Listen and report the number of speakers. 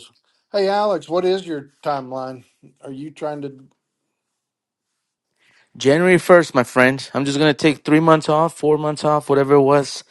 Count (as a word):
two